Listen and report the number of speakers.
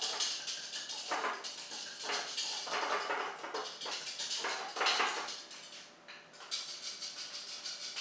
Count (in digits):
0